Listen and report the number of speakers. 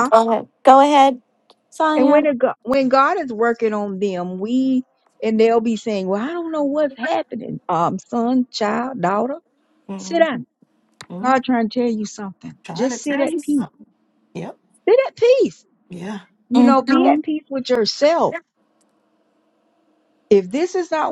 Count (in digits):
3